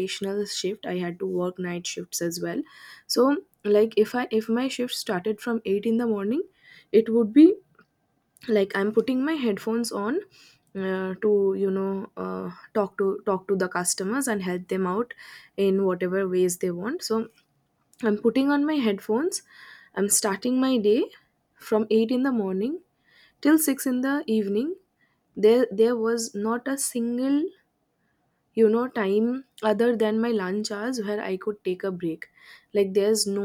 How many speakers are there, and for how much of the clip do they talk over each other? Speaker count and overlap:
1, no overlap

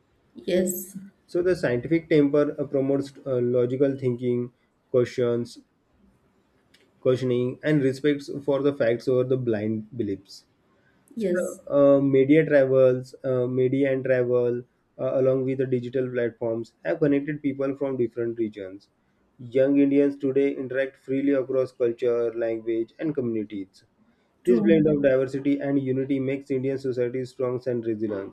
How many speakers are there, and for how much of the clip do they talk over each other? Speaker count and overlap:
2, about 2%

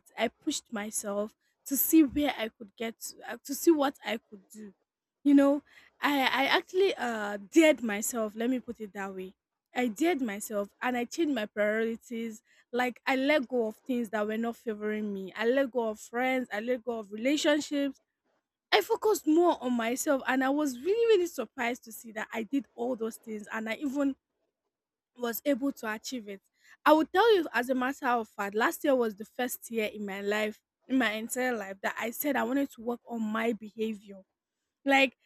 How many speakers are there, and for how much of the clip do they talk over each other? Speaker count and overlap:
1, no overlap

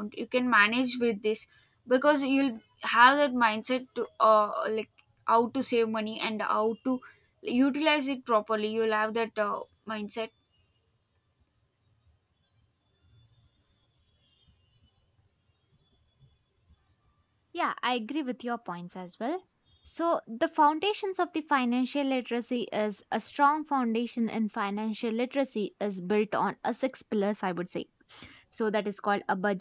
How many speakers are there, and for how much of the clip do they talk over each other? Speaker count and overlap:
2, no overlap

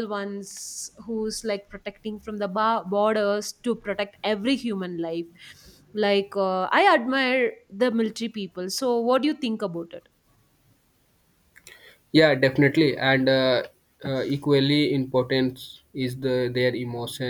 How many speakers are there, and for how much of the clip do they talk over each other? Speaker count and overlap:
2, no overlap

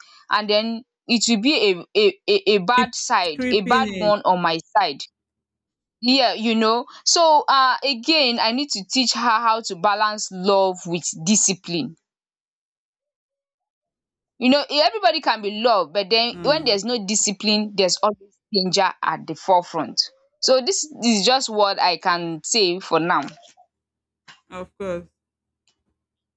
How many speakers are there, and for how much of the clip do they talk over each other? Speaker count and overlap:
2, about 5%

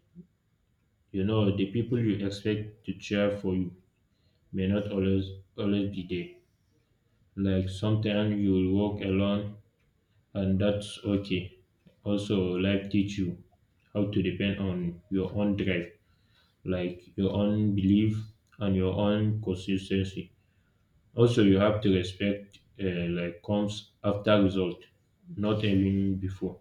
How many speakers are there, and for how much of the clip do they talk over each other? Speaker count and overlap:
1, no overlap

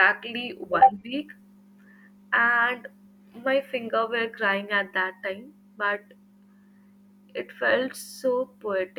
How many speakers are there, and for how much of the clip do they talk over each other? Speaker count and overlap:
1, no overlap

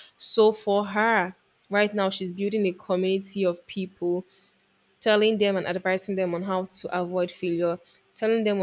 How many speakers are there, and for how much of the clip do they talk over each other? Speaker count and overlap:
1, no overlap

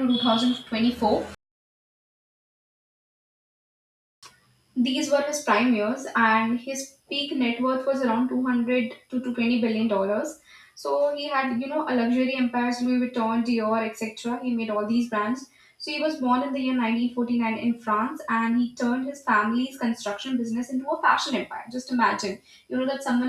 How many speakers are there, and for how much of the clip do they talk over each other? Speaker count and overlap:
1, no overlap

